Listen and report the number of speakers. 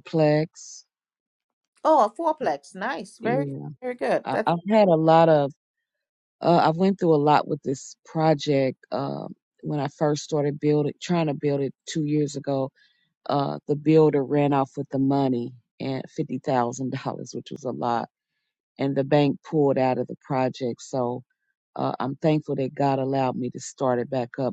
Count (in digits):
2